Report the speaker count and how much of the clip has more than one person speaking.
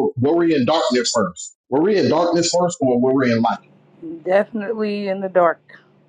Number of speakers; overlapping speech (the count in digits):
2, no overlap